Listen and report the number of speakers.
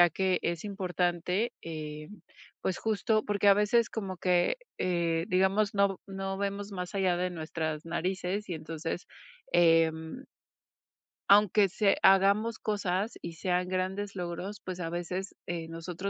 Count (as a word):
one